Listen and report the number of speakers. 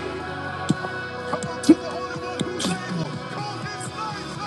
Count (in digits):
0